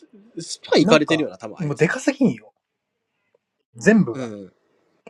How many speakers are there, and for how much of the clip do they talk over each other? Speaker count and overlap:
2, about 13%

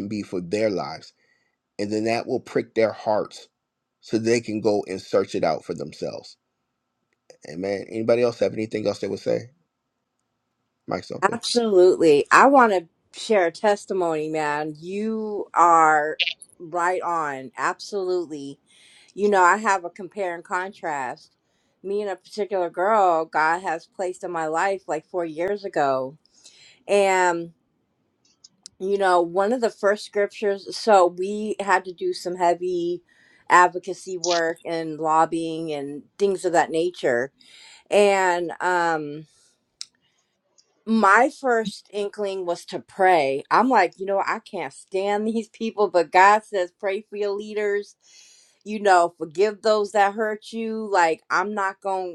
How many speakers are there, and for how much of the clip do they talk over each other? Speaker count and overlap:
2, under 1%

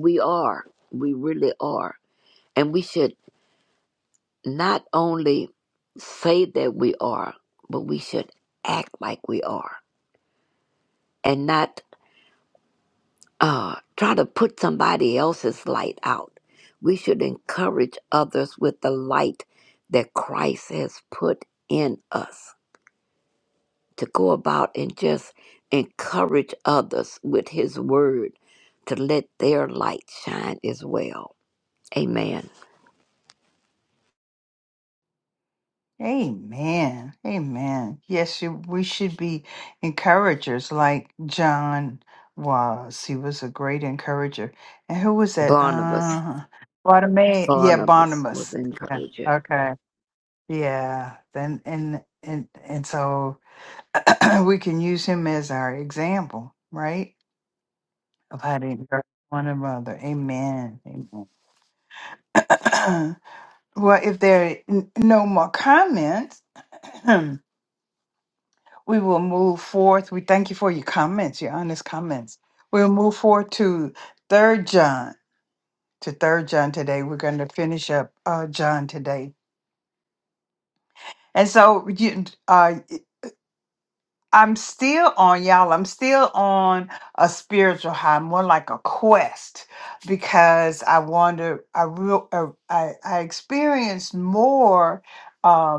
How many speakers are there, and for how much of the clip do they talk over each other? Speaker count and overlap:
2, about 2%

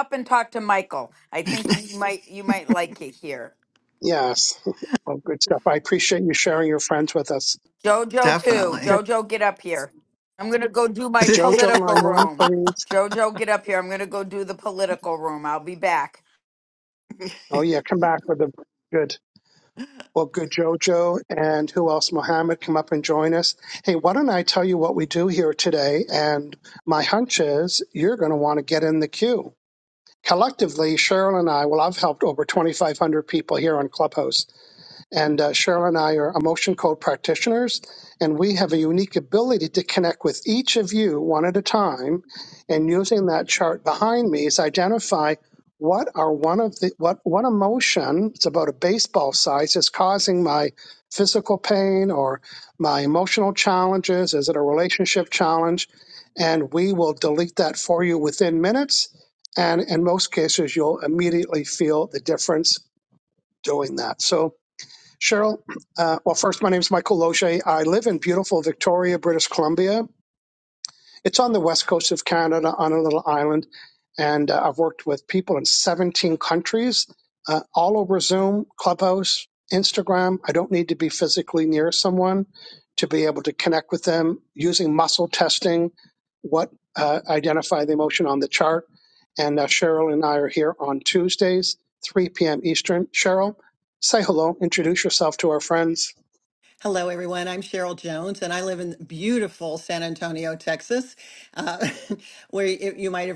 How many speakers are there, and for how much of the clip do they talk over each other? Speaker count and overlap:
3, about 2%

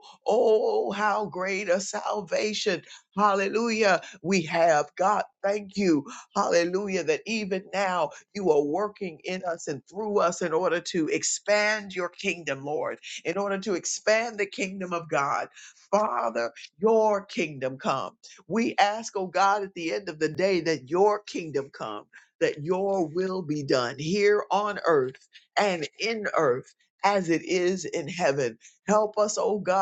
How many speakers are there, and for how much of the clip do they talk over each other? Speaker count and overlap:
1, no overlap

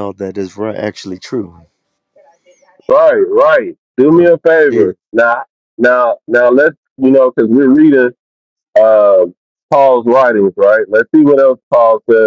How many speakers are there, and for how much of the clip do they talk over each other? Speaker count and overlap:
2, about 3%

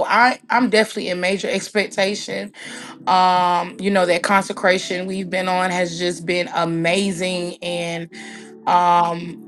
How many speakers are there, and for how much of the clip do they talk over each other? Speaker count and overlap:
1, no overlap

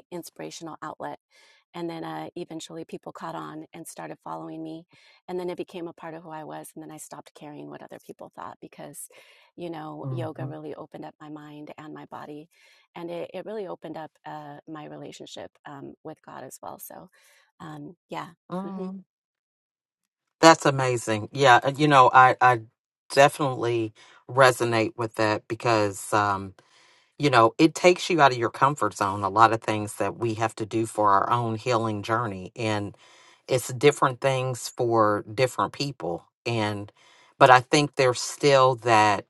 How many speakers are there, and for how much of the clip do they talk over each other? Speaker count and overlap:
2, about 1%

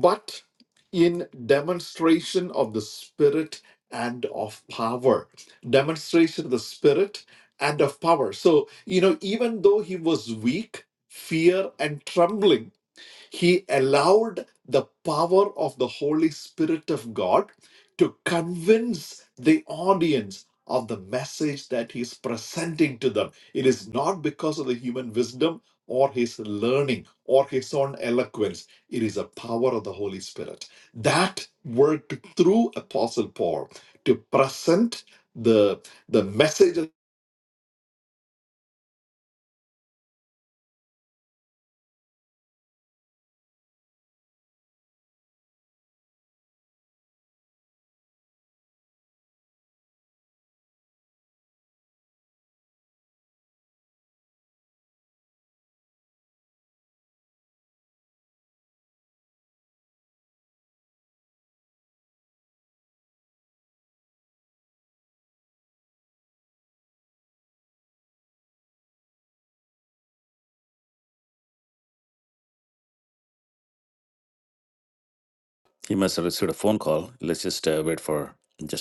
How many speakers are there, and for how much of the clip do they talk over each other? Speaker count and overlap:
2, no overlap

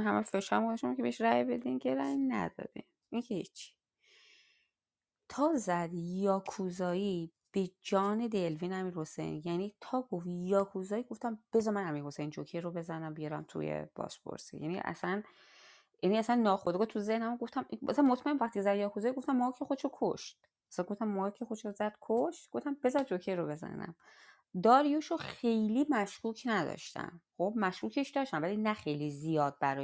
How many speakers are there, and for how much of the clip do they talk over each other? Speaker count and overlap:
1, no overlap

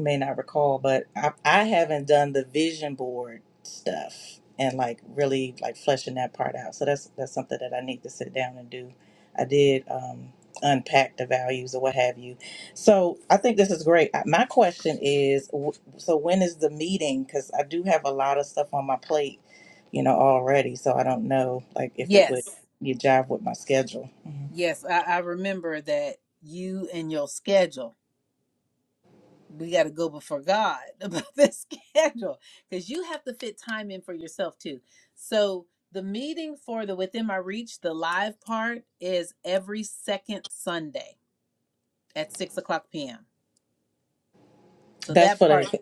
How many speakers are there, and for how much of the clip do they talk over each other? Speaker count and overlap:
2, about 2%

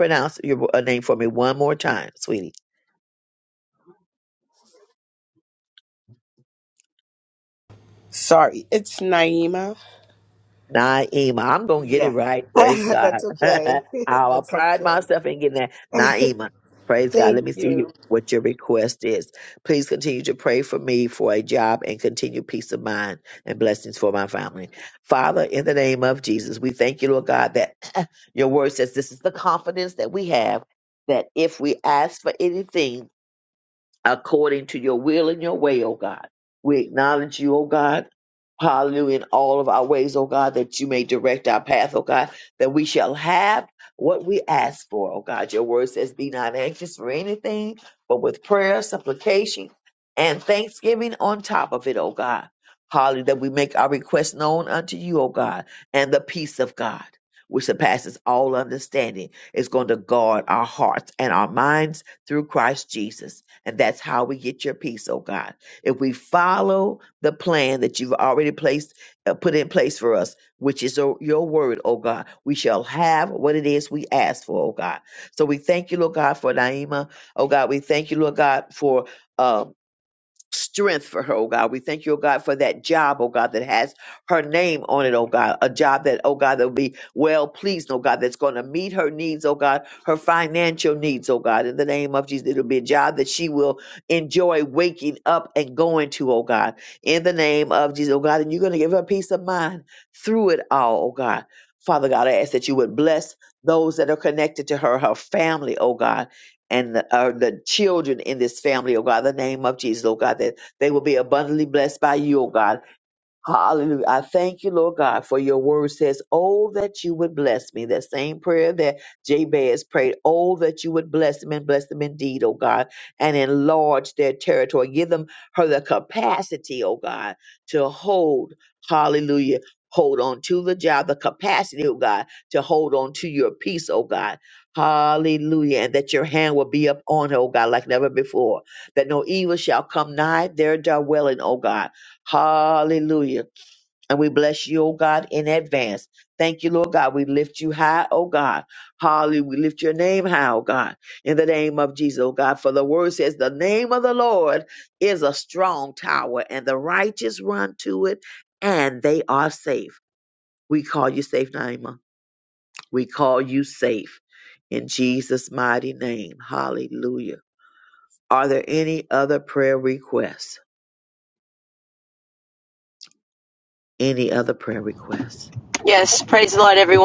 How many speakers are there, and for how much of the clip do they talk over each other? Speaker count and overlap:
3, about 1%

